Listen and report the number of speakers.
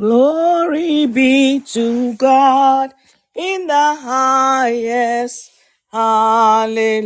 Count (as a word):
one